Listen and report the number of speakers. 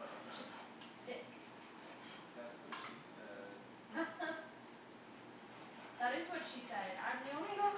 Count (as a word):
two